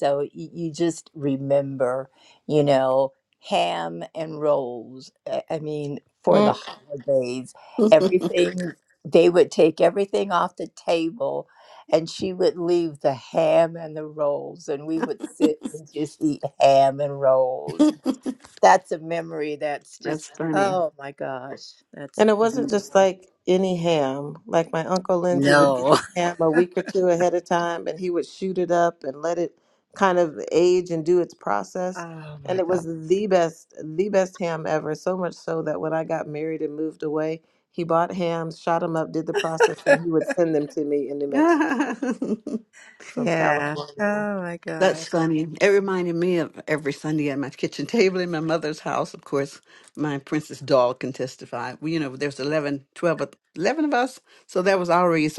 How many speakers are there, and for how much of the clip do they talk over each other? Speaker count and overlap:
three, about 7%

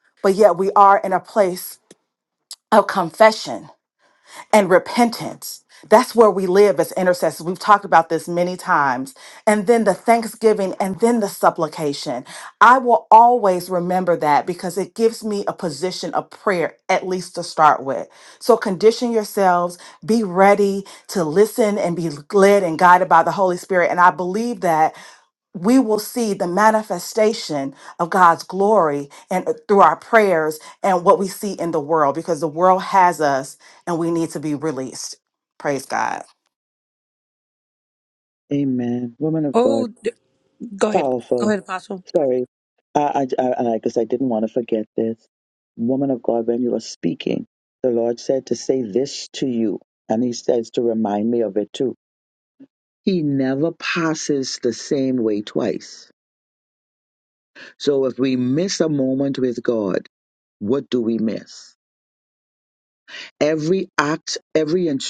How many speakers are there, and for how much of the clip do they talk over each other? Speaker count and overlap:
three, about 1%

